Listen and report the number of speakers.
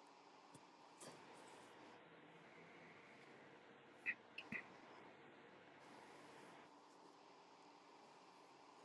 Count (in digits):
0